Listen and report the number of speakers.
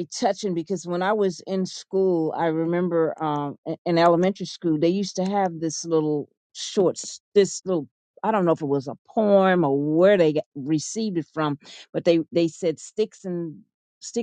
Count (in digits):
1